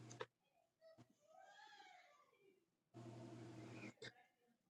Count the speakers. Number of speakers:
0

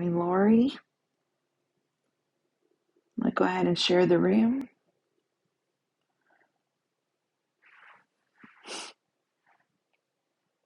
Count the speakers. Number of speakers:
1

